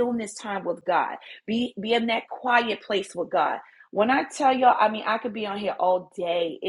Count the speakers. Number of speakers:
one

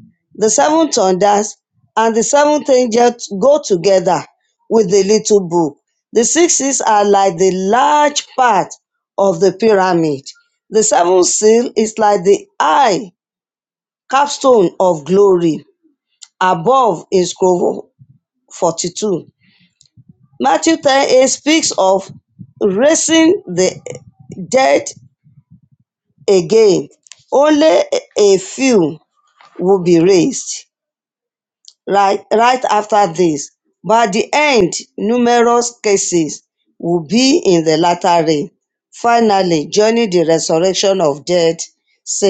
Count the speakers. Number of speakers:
one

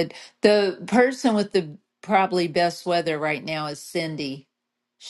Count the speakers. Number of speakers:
one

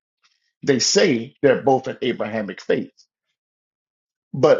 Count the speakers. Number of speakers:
one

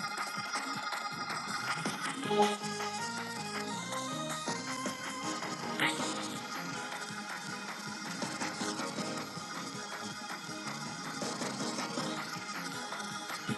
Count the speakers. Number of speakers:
zero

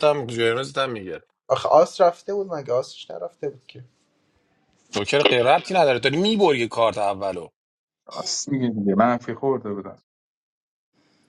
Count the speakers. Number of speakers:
three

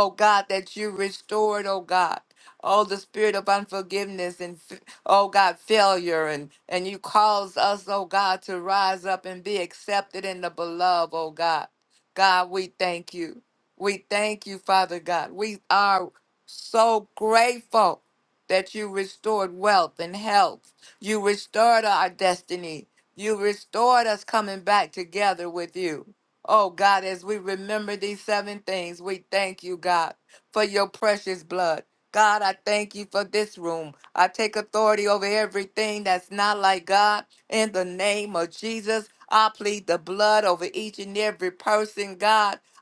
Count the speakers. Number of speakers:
one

